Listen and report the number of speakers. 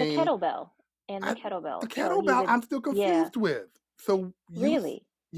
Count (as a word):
two